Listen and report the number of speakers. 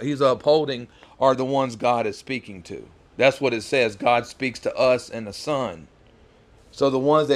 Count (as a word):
one